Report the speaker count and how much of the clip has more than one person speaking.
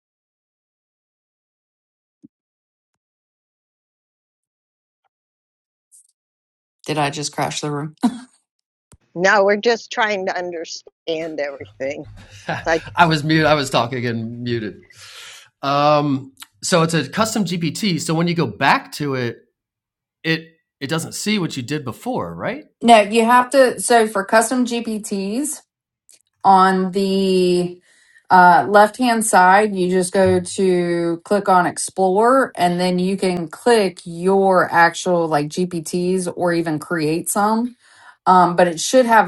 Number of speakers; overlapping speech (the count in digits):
3, no overlap